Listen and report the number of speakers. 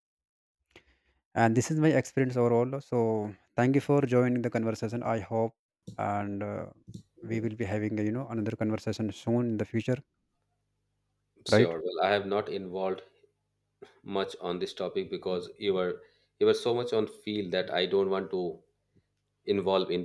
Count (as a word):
two